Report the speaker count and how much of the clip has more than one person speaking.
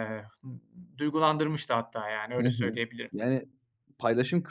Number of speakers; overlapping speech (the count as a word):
two, about 9%